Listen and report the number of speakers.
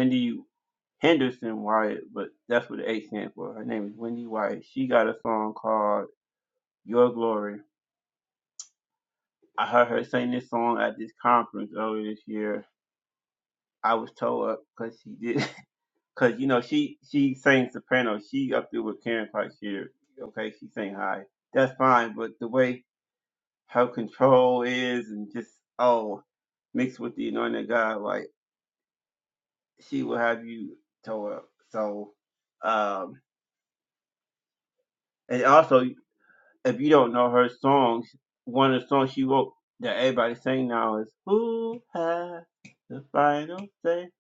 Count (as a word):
one